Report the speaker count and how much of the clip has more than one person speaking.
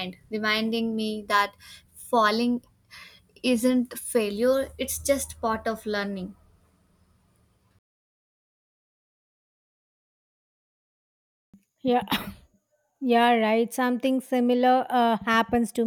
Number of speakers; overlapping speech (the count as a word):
two, no overlap